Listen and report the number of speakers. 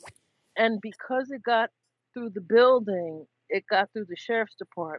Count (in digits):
1